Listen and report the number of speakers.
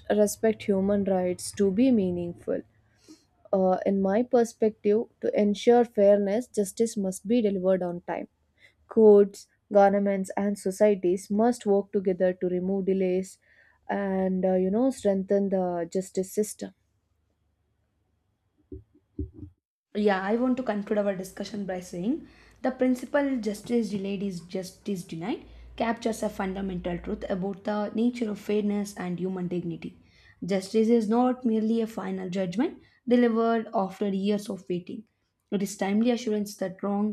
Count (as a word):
two